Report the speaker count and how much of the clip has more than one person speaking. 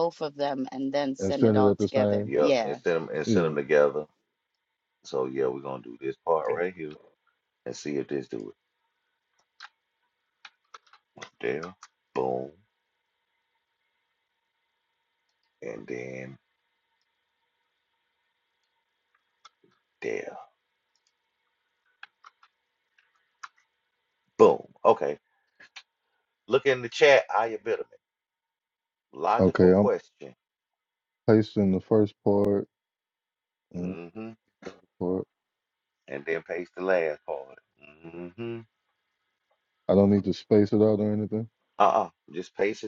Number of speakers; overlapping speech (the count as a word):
three, about 6%